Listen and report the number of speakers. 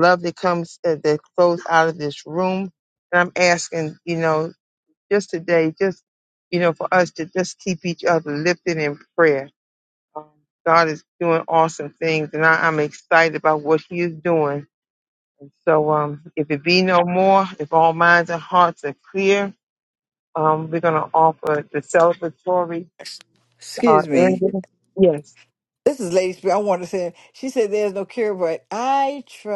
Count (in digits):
2